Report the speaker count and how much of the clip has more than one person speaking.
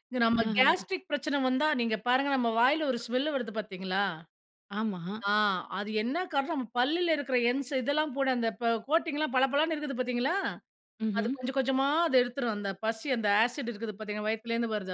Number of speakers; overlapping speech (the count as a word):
two, about 5%